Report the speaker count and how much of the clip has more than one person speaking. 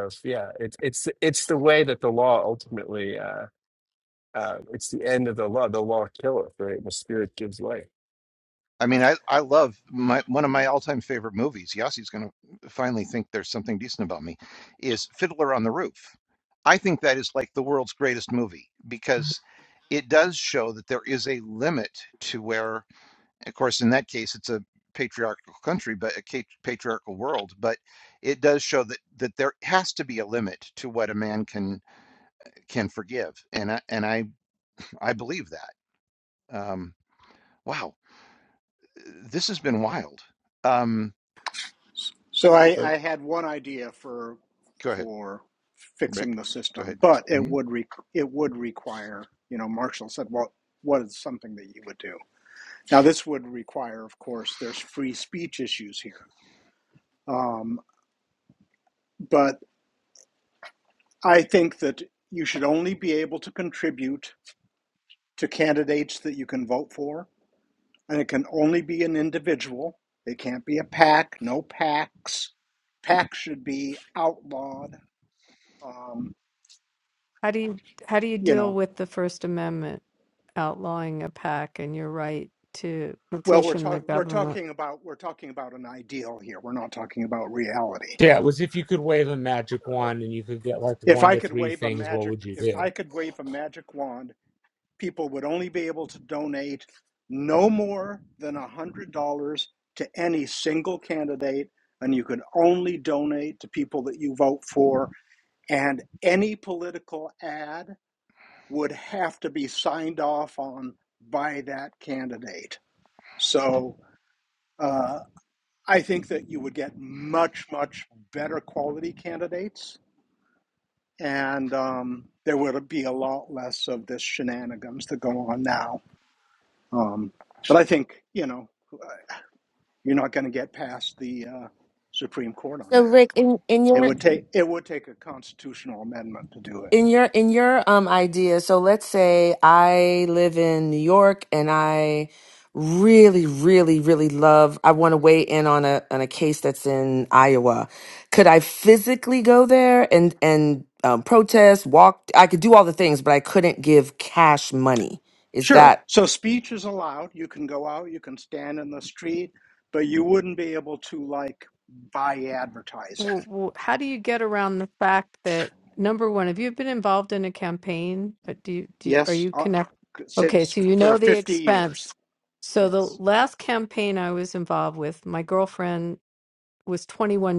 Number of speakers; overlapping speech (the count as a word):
six, about 4%